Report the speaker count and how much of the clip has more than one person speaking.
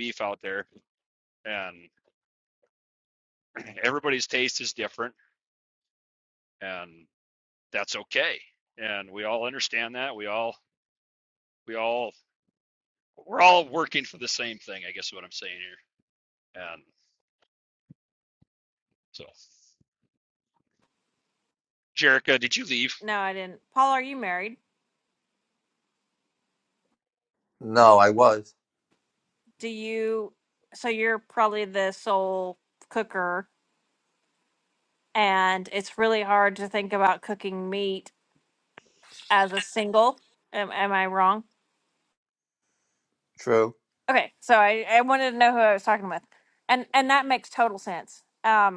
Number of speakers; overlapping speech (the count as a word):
three, no overlap